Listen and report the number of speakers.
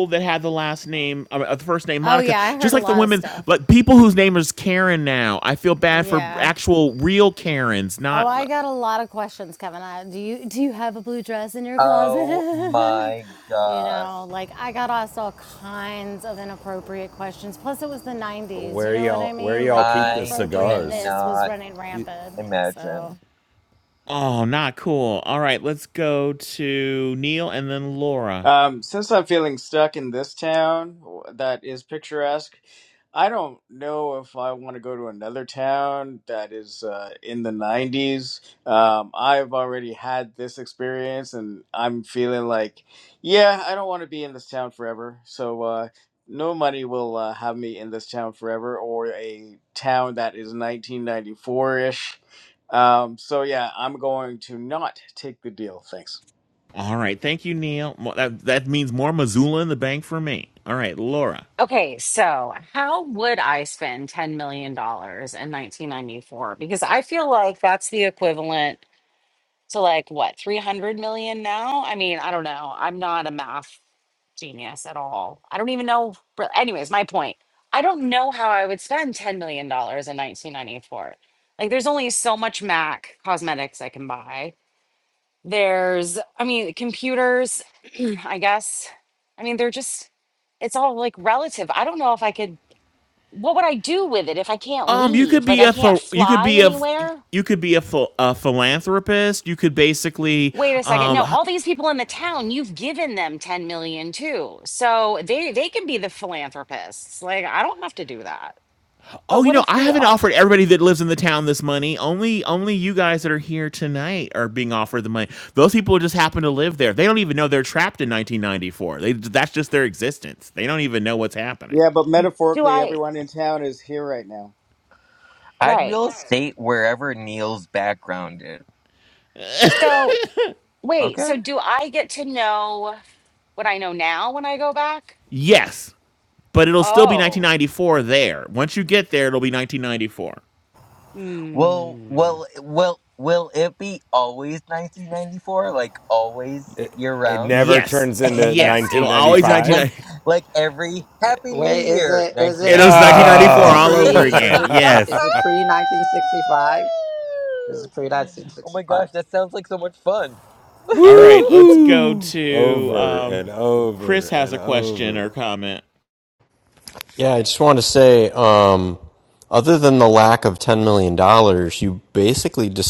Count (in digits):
8